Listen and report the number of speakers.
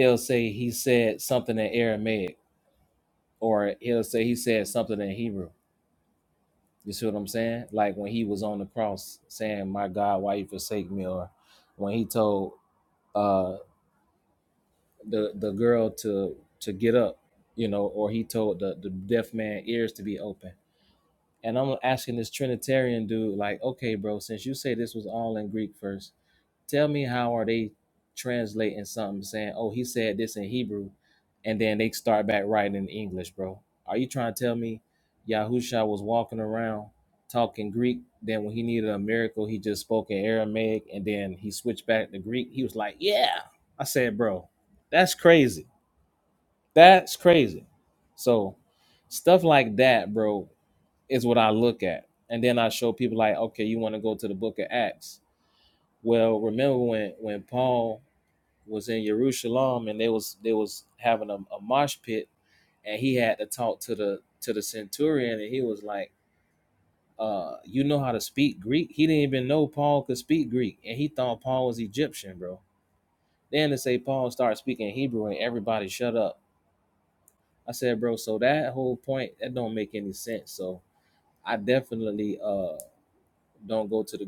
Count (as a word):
one